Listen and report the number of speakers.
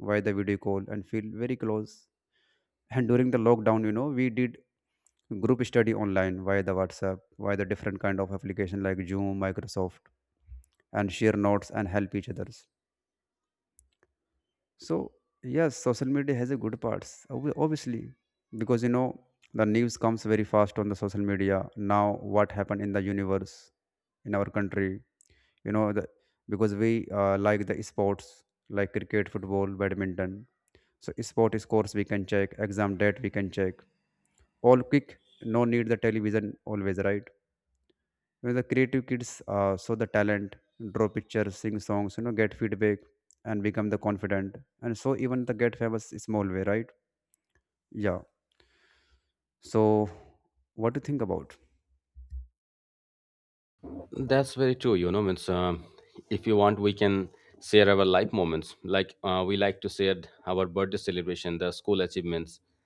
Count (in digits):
2